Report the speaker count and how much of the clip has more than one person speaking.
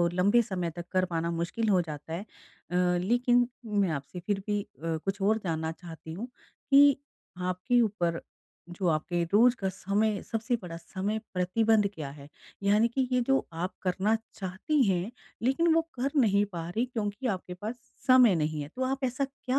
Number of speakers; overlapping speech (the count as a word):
one, no overlap